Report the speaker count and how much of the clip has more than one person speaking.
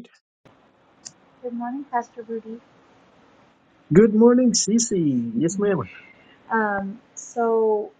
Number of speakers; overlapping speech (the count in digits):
2, about 5%